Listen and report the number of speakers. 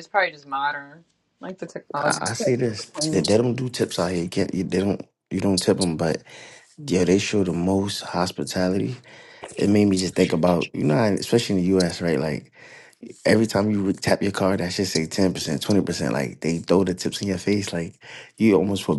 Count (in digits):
2